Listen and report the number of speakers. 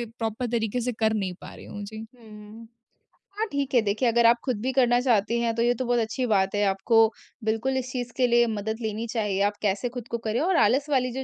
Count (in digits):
2